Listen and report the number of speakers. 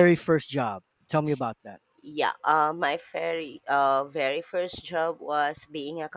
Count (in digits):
2